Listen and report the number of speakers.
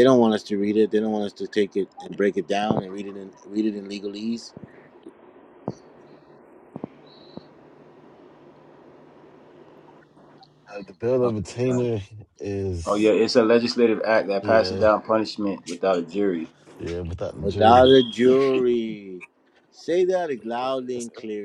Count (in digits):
3